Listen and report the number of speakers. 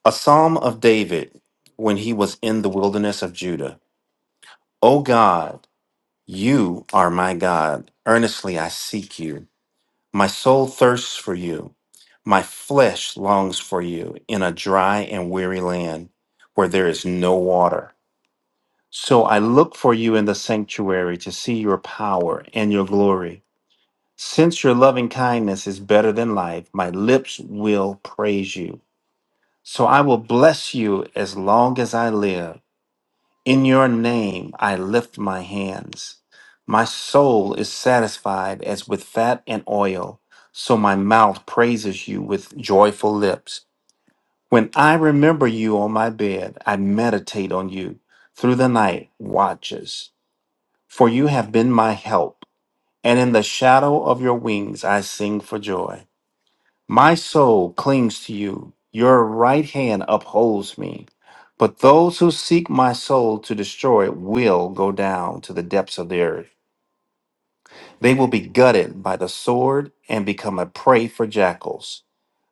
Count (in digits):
1